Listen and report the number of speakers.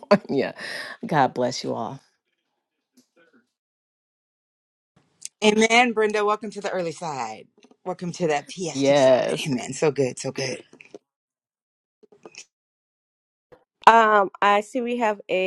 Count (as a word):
three